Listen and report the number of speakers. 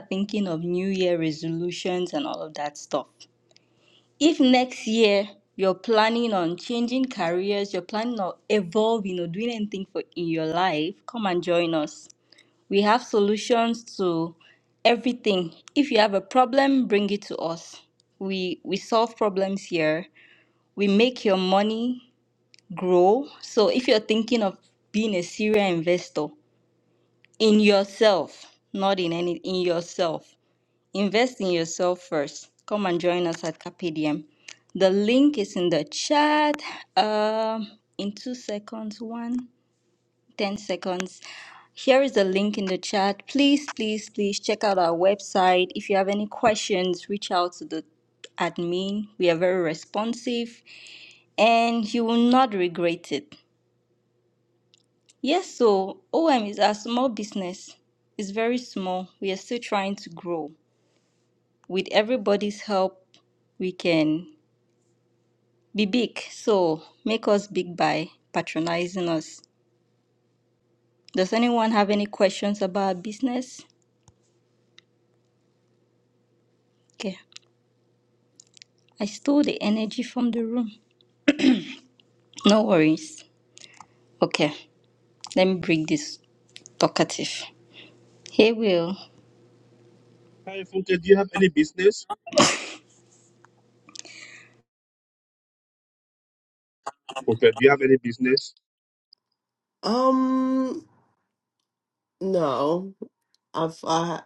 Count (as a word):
three